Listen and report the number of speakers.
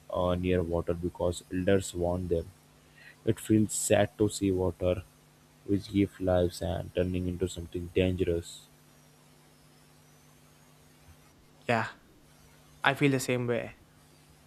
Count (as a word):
two